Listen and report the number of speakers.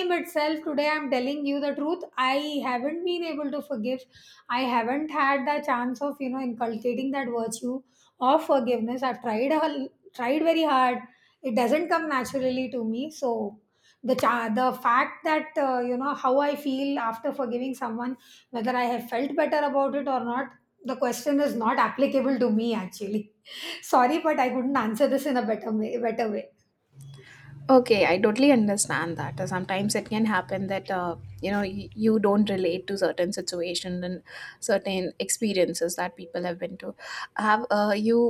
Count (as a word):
two